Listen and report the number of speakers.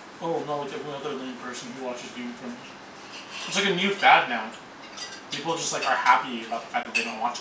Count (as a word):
one